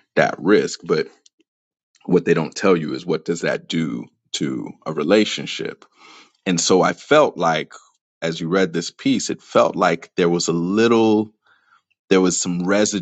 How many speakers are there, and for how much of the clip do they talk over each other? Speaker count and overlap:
1, no overlap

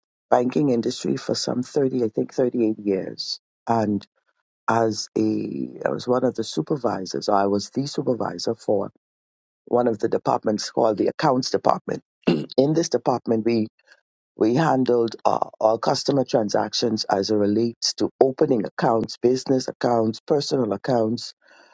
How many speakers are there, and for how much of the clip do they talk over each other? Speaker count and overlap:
1, no overlap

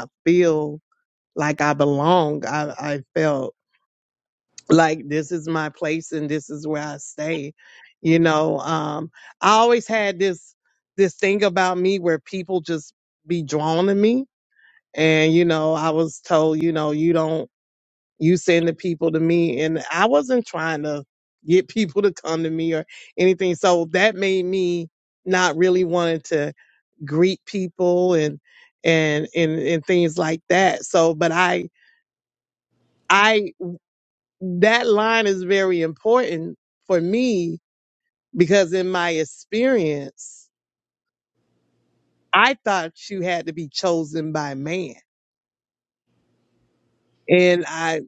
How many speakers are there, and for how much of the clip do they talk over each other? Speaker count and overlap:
1, no overlap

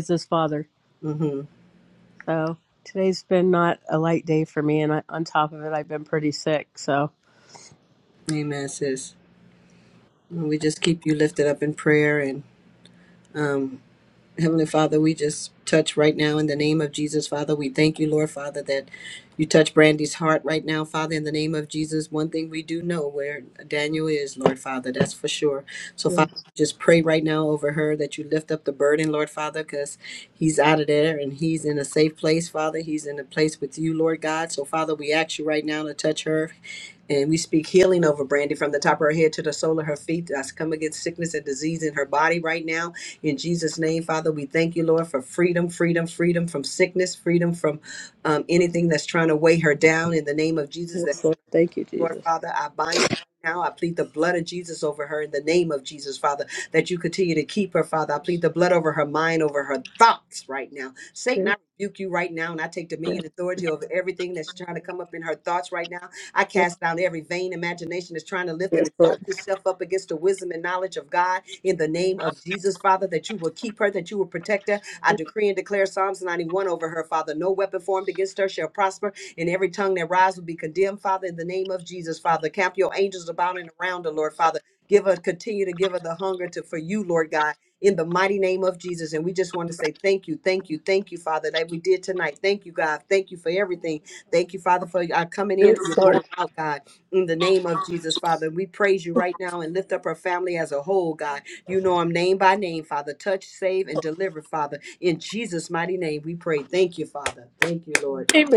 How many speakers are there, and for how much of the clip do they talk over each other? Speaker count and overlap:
2, about 2%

